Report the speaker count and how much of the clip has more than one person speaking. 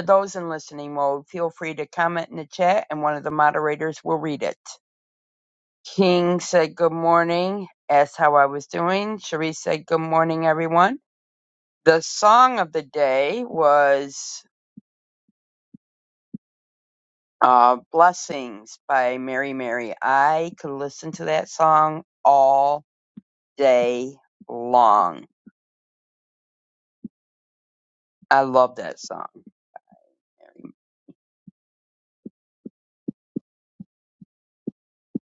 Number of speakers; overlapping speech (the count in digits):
1, no overlap